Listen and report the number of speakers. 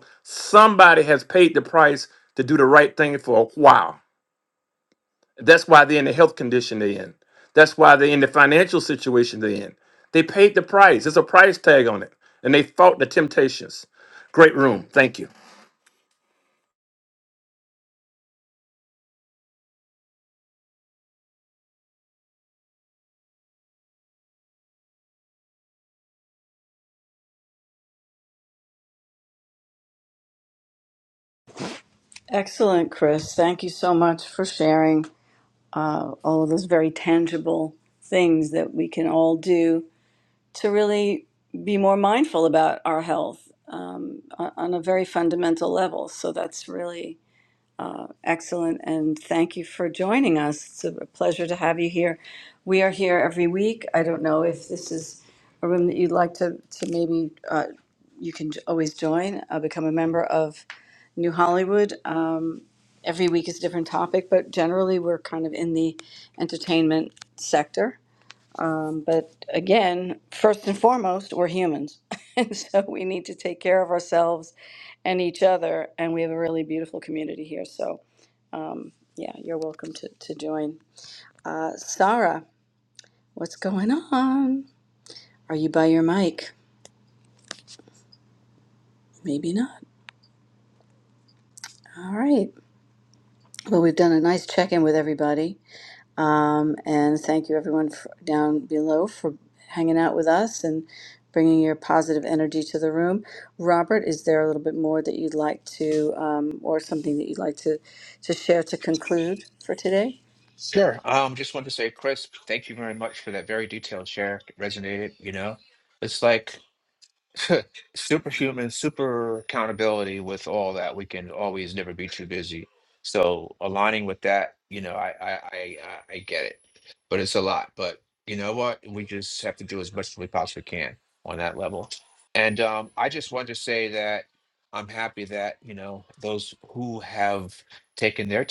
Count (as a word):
three